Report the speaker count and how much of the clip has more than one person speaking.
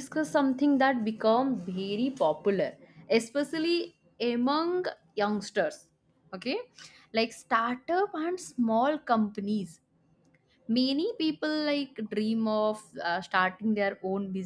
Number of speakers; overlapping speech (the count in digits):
1, no overlap